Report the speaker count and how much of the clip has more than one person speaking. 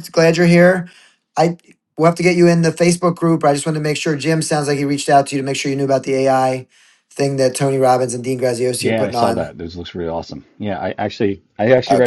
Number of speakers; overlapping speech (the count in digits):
2, about 7%